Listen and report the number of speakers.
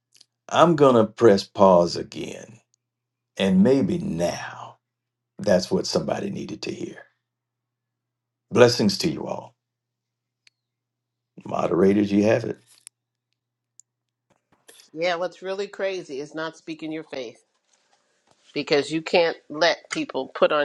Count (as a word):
two